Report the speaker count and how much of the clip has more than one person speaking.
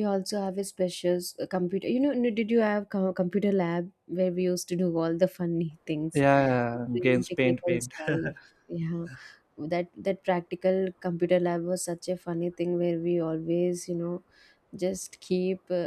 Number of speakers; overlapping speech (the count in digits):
2, about 7%